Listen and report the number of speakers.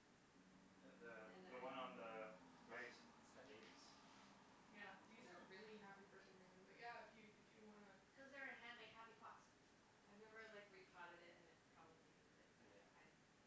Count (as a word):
four